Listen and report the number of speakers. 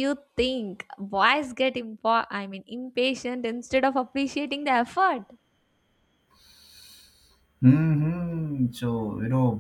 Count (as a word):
two